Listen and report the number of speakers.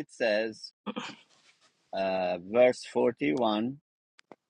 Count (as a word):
one